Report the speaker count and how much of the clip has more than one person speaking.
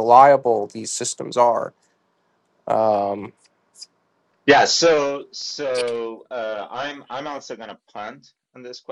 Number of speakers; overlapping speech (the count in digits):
2, no overlap